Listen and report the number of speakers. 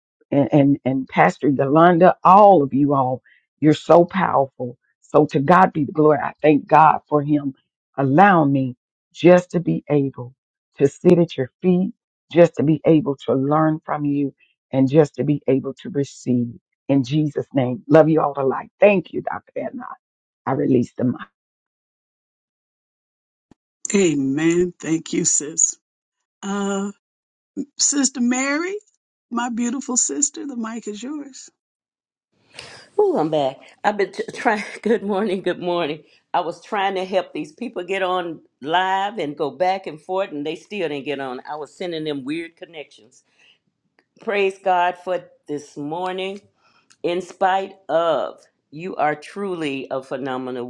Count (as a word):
three